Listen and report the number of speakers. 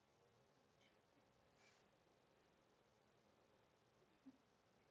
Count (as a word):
zero